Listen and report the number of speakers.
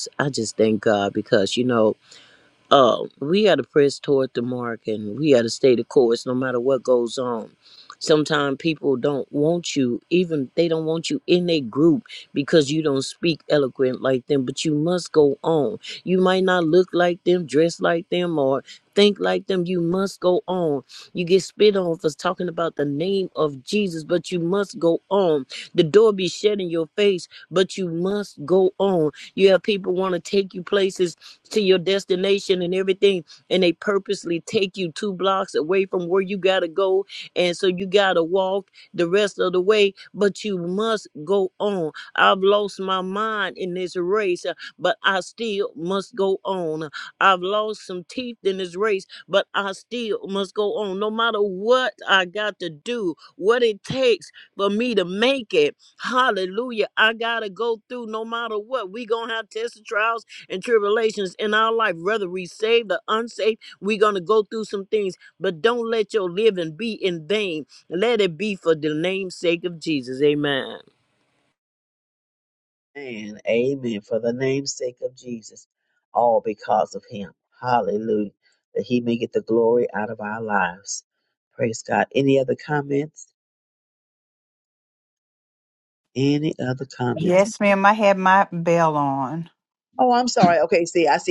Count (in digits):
3